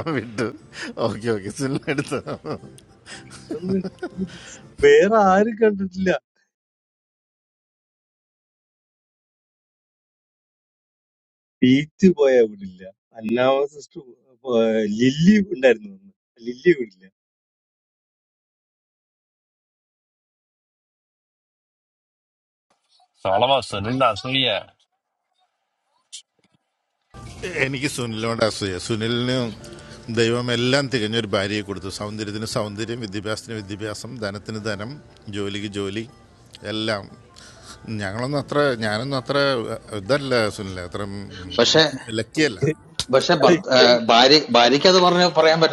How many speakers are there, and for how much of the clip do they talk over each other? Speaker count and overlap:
4, about 2%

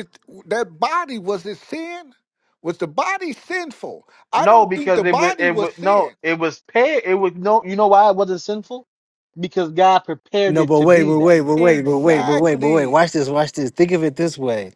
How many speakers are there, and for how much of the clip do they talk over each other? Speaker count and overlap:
3, about 25%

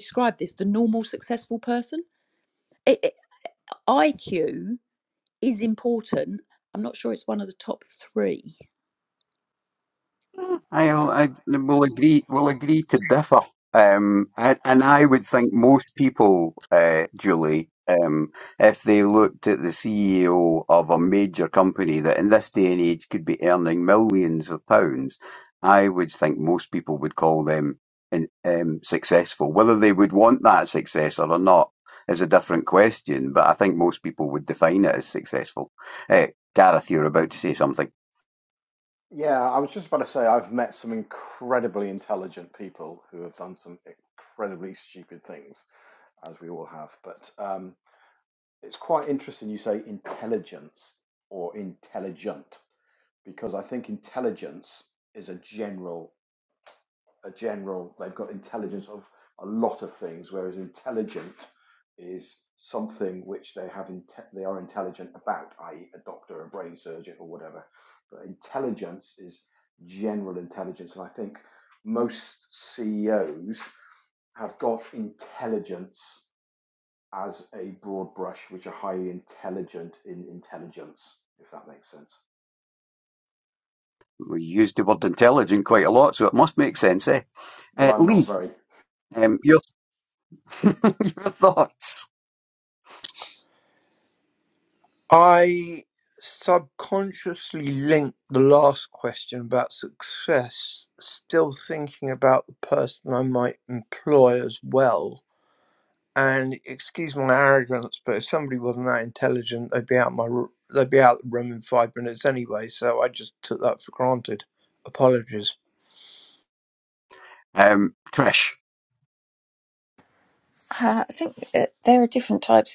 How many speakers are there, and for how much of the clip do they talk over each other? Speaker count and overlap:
5, under 1%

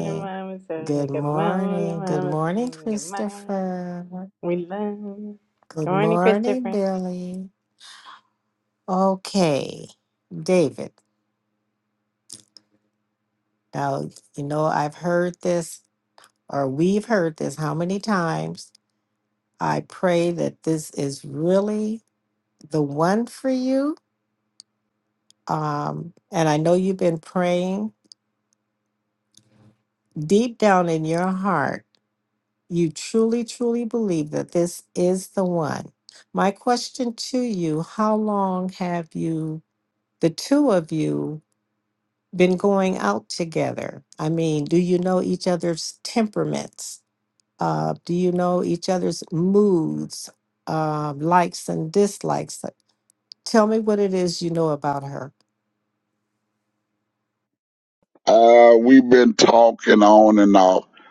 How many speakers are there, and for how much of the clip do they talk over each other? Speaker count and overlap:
3, about 7%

